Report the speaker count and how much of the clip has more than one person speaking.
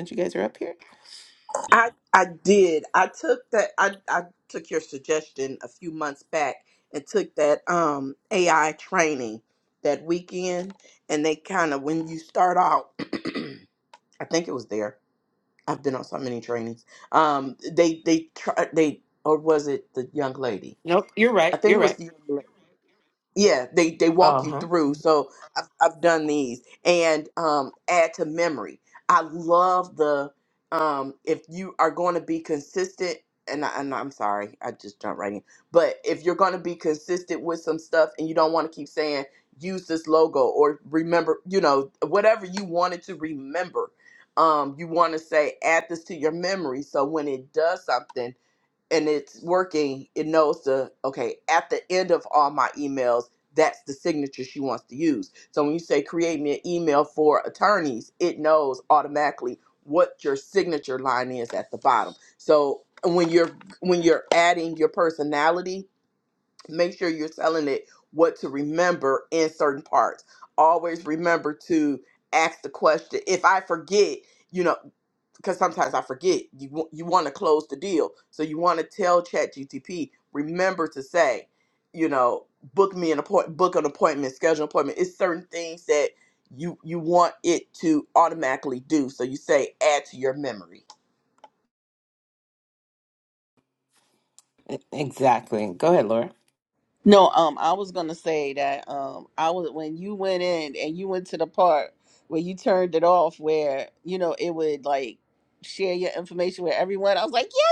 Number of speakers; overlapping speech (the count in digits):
3, about 1%